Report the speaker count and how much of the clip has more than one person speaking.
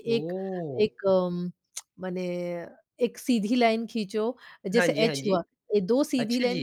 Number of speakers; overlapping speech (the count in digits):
2, about 22%